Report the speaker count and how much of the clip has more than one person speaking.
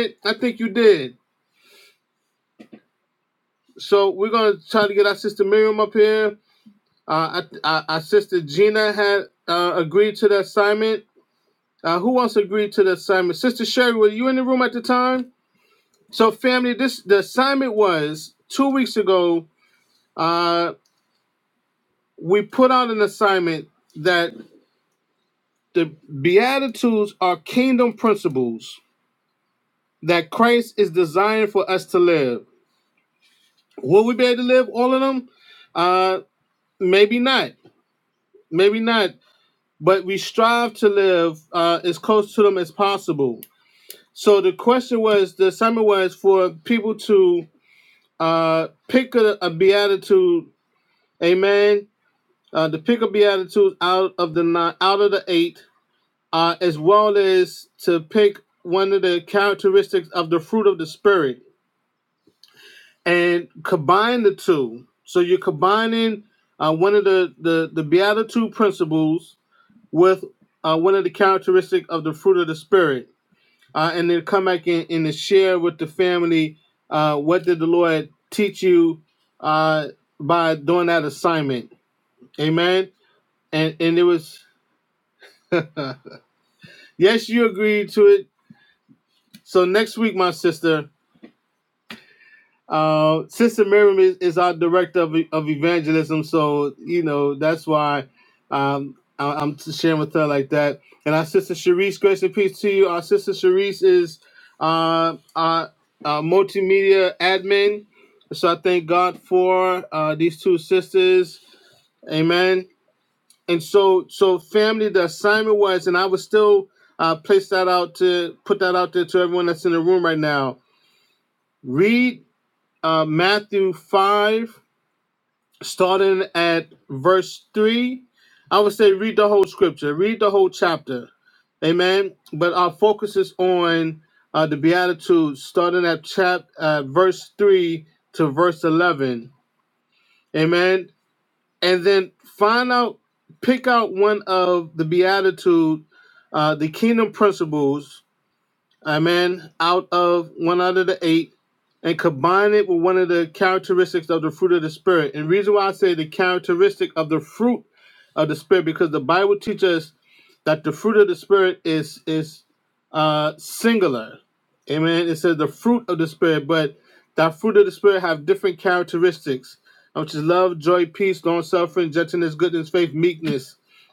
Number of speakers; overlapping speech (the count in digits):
1, no overlap